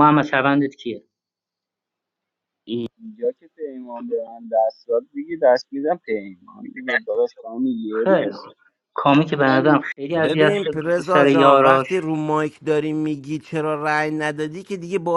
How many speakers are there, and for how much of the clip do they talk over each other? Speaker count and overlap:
3, about 17%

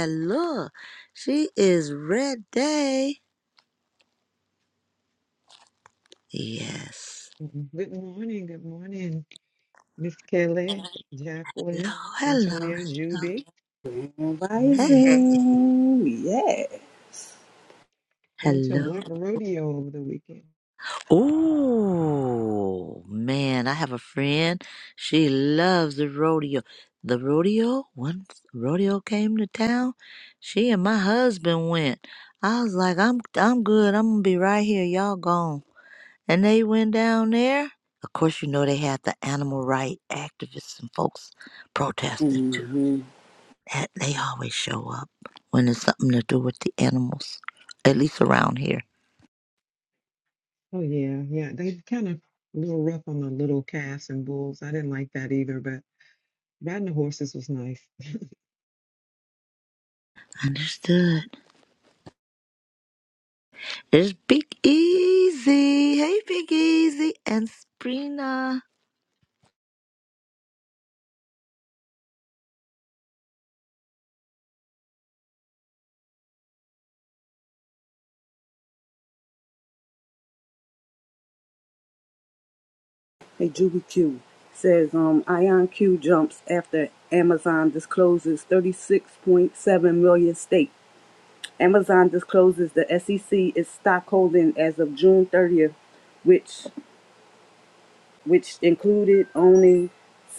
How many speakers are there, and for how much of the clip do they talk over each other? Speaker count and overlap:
3, about 3%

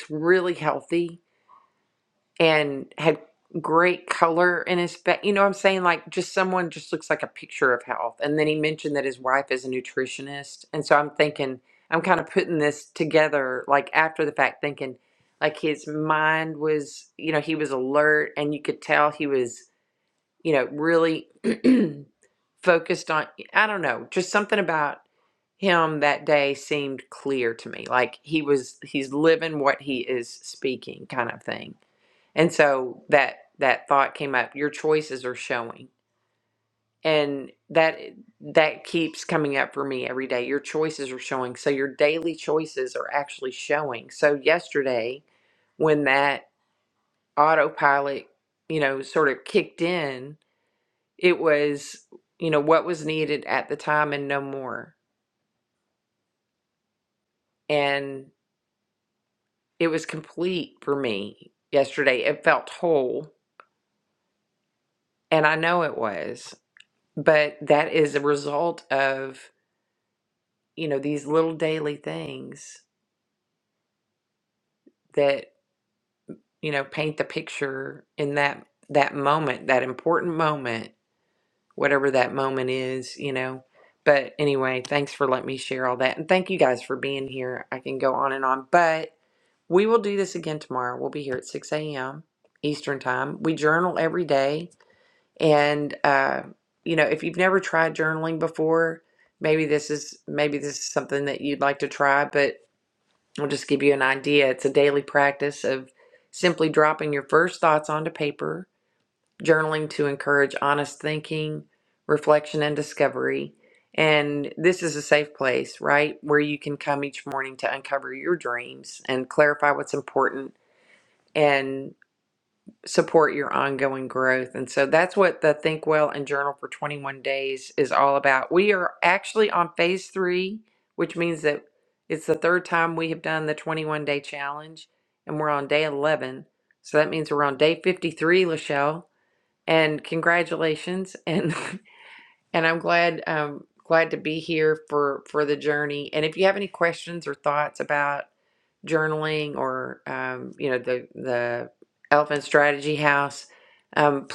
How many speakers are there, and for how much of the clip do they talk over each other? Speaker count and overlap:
1, no overlap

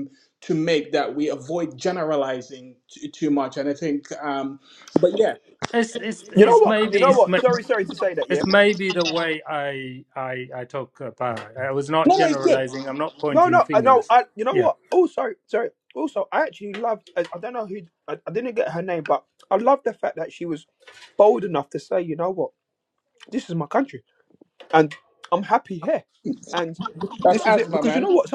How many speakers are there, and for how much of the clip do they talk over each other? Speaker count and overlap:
3, about 14%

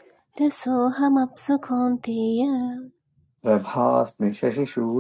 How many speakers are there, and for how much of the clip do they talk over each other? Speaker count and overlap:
2, no overlap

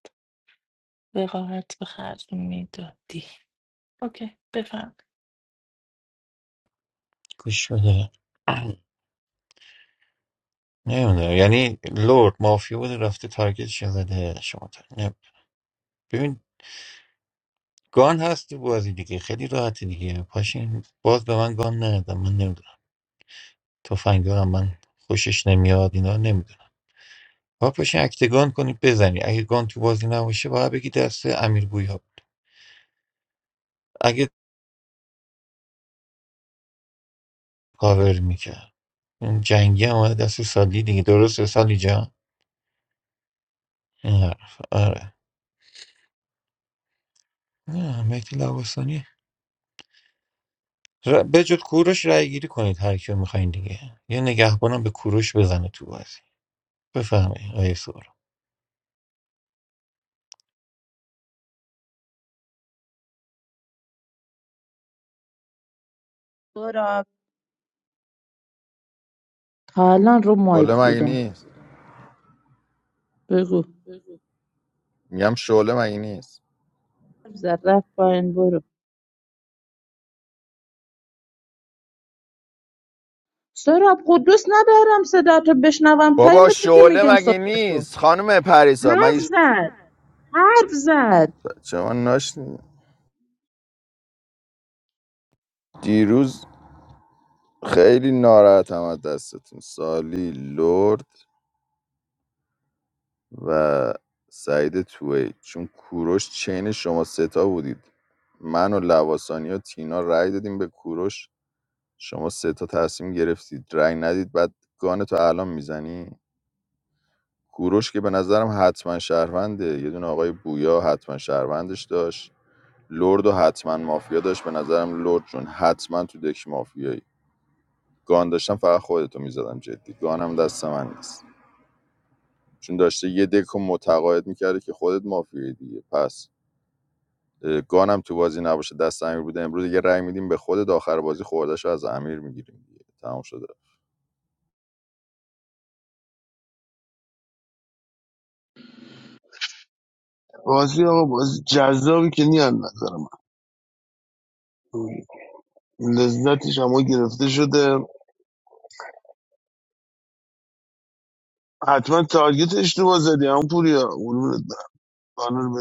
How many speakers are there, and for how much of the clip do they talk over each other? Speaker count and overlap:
5, about 2%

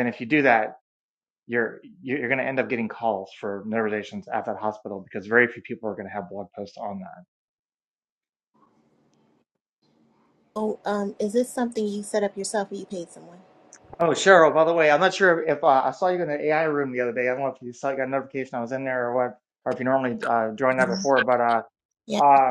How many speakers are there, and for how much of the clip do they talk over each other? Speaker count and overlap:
2, about 1%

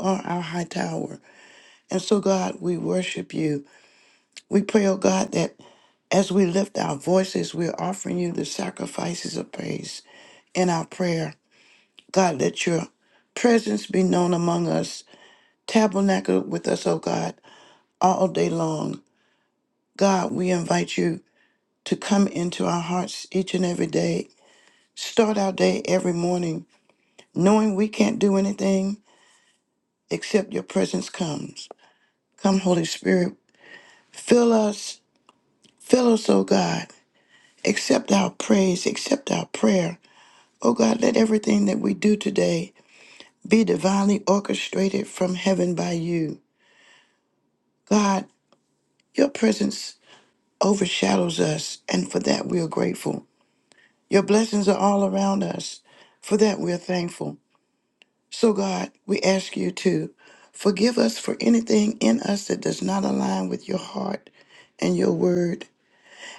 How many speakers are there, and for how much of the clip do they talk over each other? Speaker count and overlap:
1, no overlap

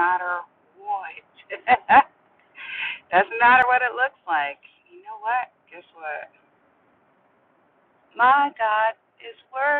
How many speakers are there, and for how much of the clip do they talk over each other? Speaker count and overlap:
1, no overlap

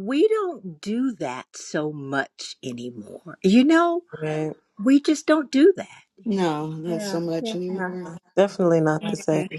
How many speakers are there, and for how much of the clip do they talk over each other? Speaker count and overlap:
3, about 11%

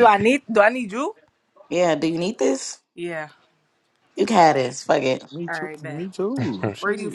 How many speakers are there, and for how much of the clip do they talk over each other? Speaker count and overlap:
3, about 13%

